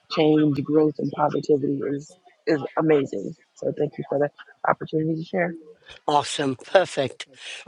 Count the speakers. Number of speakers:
2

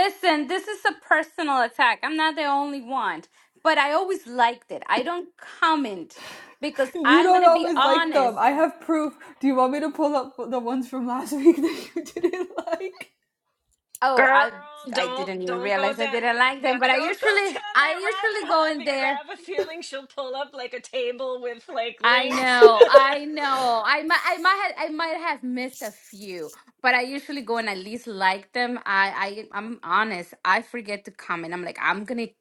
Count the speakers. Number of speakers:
3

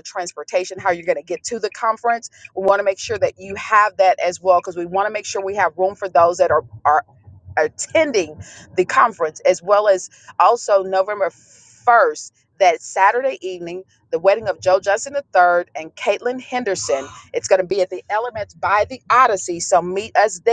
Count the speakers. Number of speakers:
1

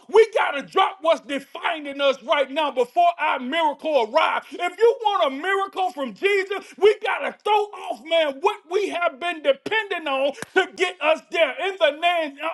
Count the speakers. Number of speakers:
1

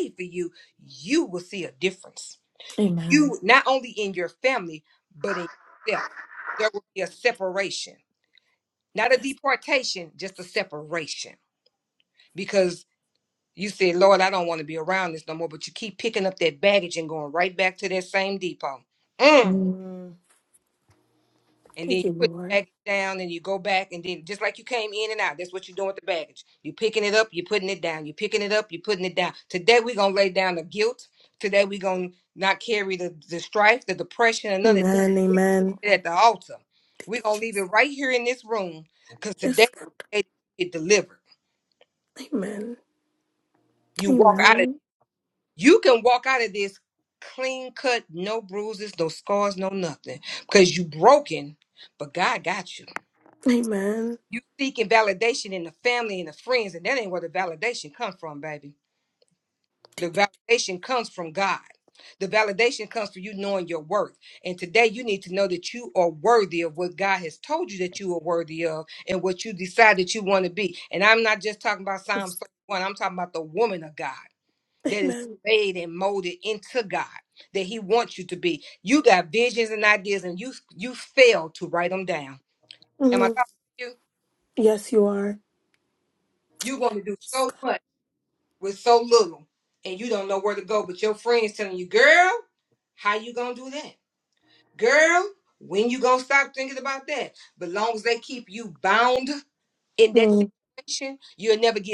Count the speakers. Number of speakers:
2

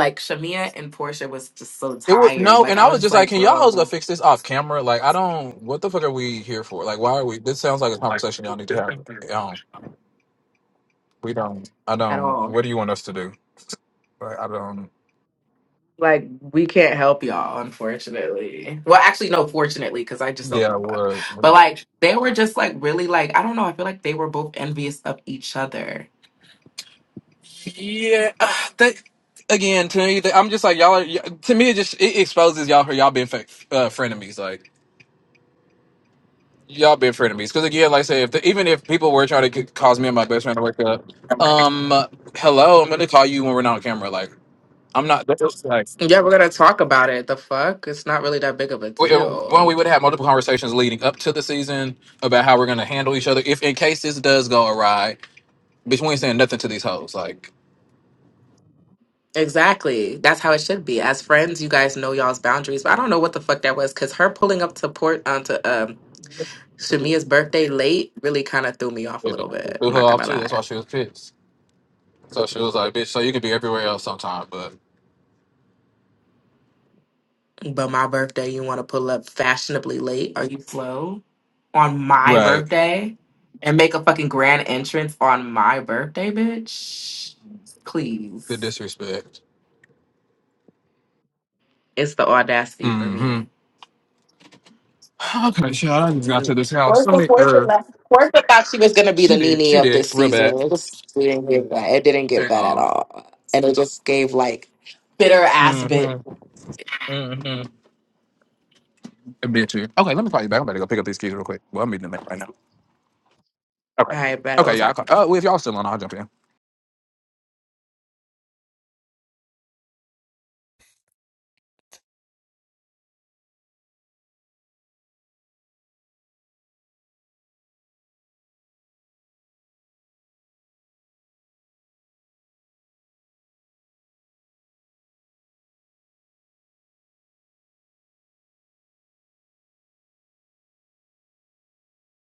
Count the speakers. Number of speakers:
2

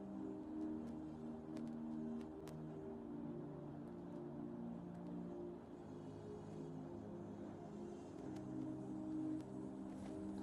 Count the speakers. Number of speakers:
0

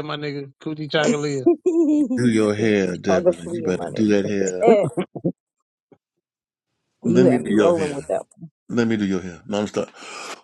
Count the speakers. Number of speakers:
3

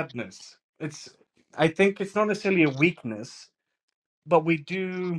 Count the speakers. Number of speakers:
1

